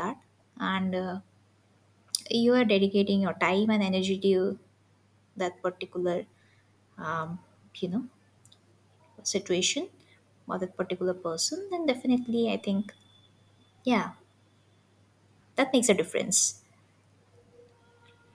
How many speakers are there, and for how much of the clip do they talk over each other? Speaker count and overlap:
one, no overlap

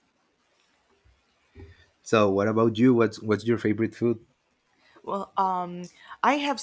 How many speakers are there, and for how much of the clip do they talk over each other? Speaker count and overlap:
two, no overlap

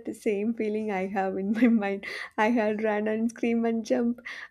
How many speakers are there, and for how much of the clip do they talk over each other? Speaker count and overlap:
one, no overlap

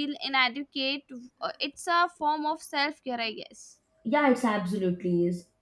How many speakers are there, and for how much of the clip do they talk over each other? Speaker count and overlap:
two, no overlap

